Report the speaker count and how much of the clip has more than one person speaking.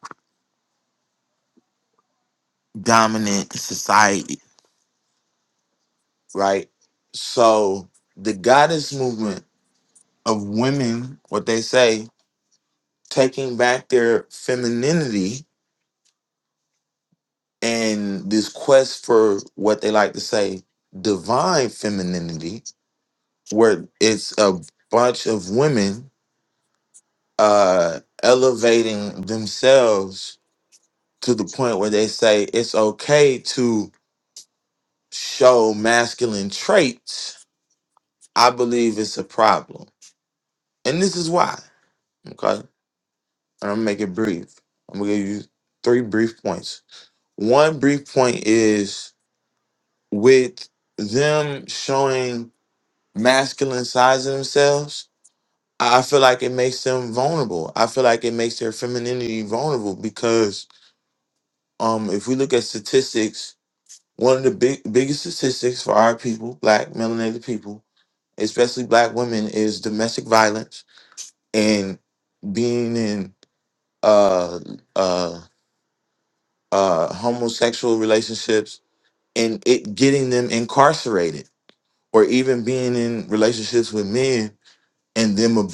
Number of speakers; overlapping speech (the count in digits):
1, no overlap